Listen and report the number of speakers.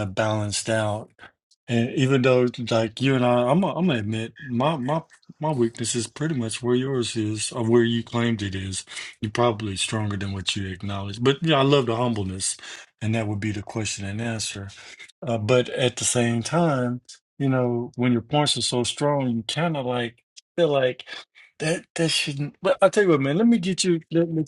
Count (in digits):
1